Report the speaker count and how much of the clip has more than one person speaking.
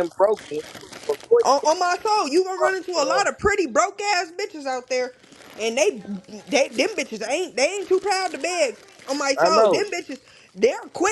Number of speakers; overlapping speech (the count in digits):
2, about 13%